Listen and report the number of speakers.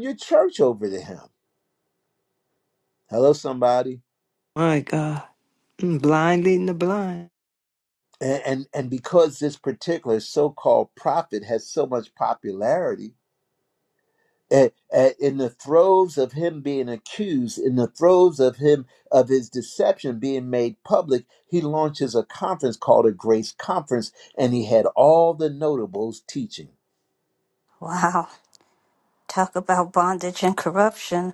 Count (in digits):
3